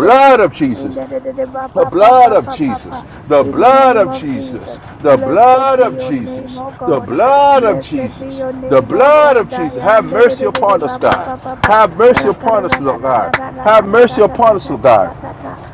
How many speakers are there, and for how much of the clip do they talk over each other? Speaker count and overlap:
2, about 66%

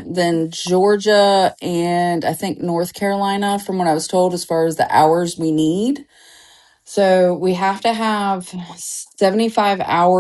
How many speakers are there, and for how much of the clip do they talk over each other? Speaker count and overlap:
1, no overlap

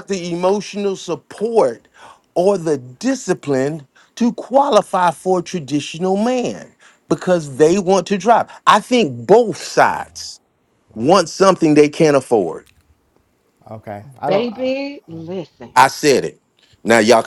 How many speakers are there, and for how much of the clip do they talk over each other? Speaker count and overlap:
3, about 4%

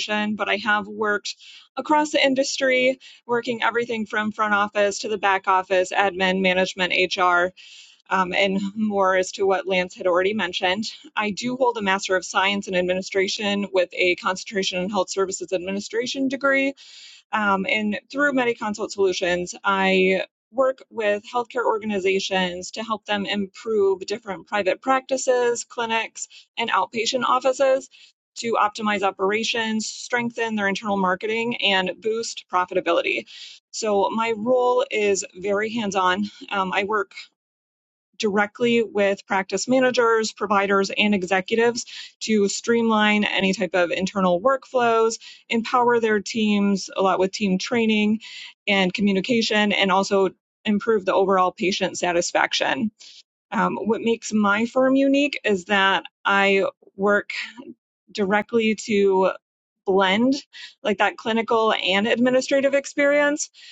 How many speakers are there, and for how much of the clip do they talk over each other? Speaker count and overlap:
1, no overlap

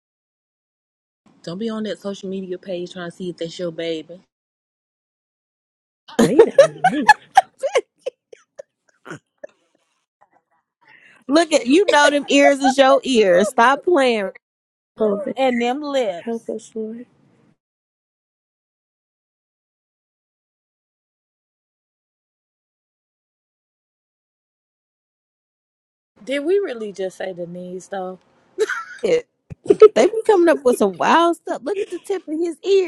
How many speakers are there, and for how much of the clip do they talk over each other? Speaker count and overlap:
4, under 1%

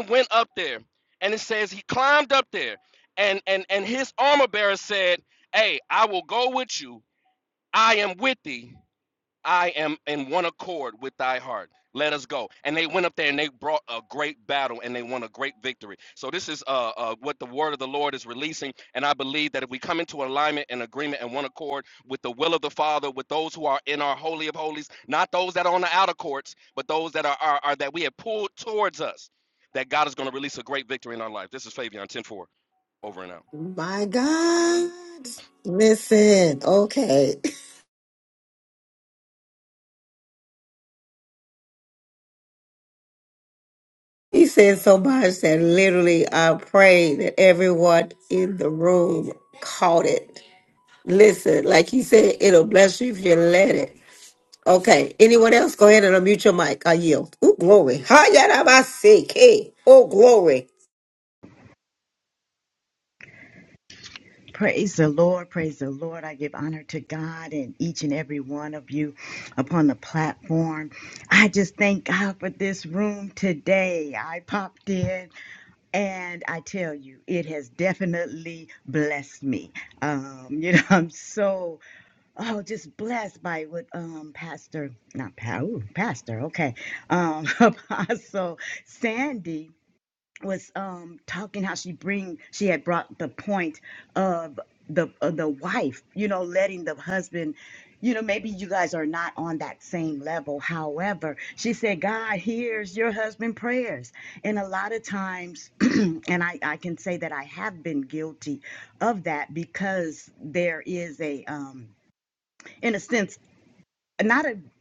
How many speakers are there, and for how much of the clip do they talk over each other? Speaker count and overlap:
3, no overlap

